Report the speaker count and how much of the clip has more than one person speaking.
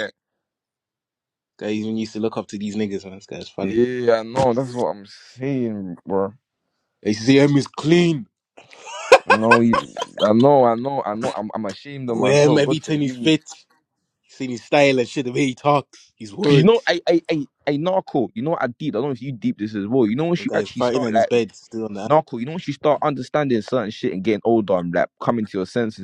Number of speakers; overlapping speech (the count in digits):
2, about 10%